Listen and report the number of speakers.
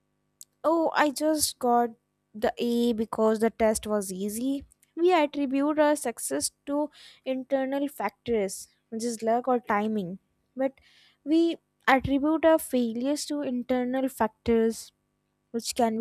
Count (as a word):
one